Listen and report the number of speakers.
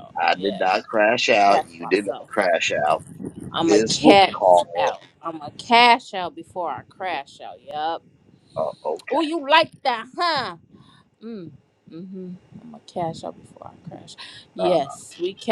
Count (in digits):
2